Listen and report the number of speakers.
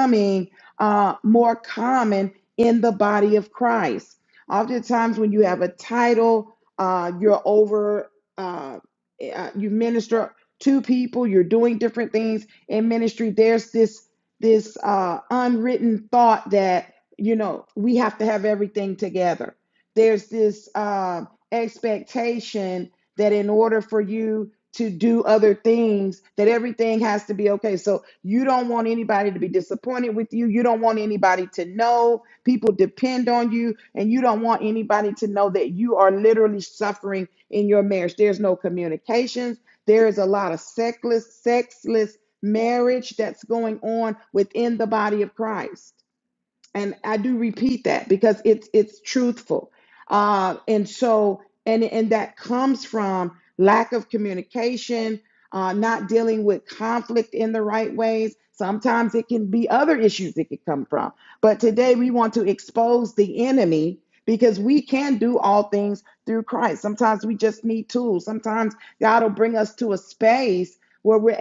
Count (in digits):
1